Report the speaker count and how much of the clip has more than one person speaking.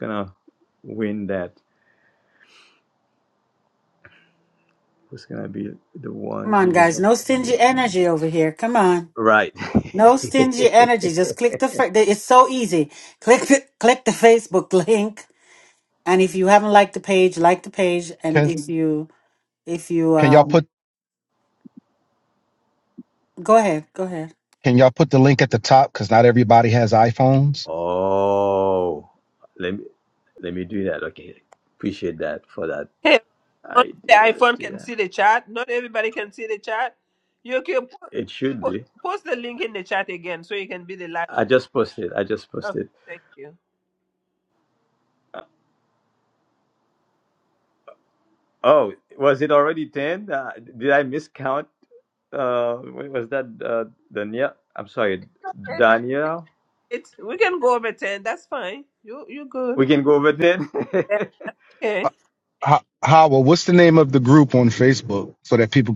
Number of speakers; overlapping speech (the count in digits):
4, about 5%